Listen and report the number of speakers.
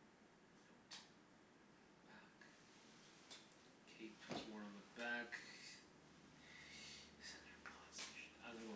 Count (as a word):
one